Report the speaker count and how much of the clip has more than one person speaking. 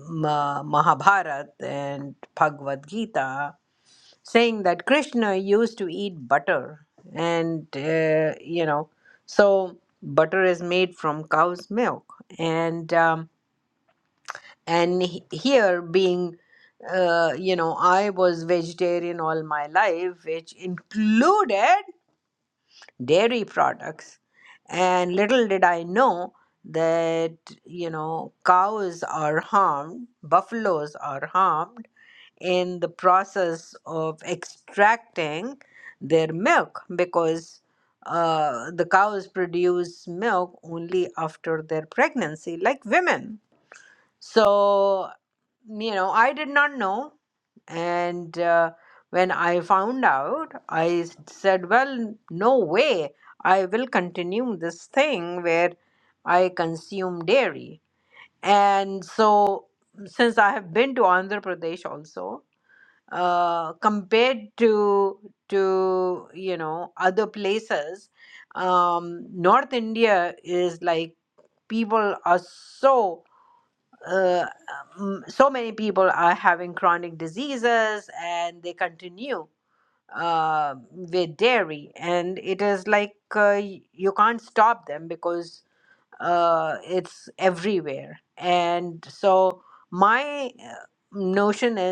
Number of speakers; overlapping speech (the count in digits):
1, no overlap